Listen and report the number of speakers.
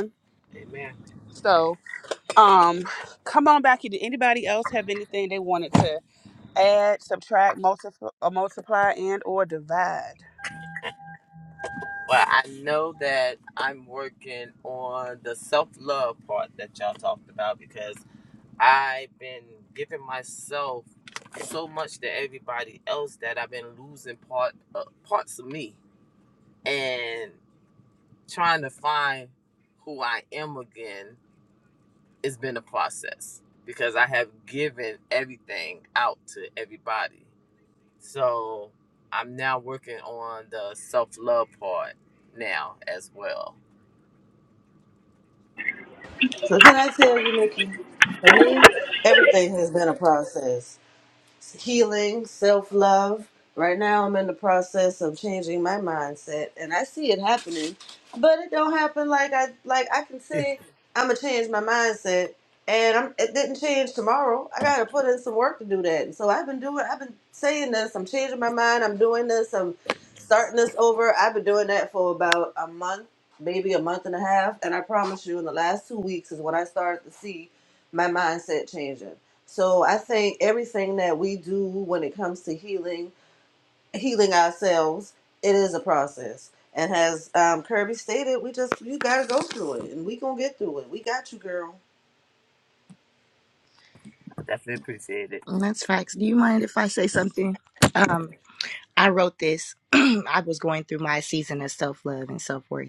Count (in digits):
4